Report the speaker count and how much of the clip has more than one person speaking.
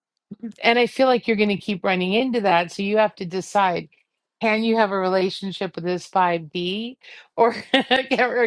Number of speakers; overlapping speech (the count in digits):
1, no overlap